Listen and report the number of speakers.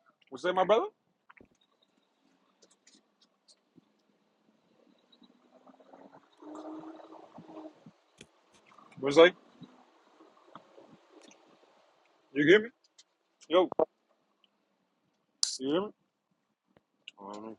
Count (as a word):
one